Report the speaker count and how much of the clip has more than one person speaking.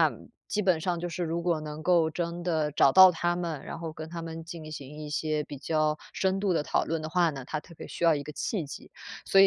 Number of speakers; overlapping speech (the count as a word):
one, no overlap